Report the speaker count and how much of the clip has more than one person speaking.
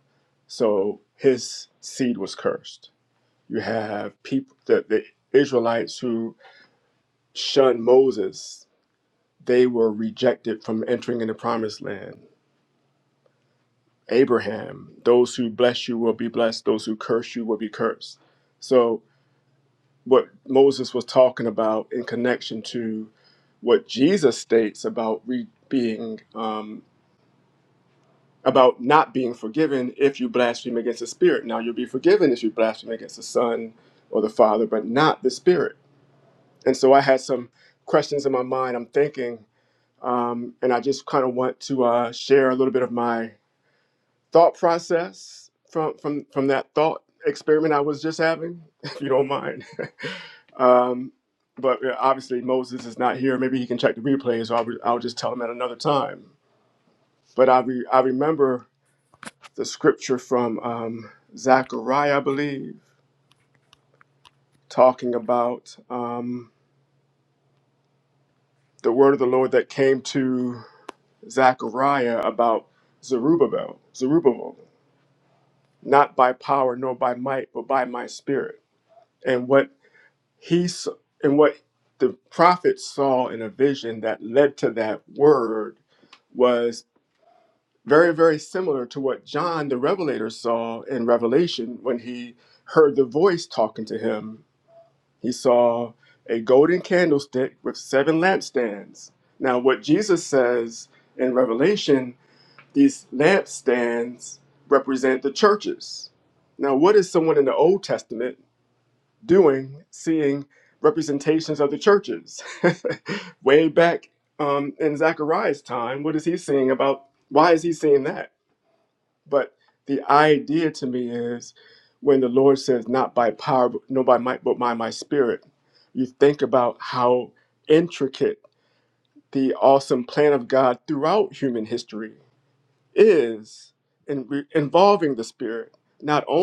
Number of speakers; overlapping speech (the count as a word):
one, no overlap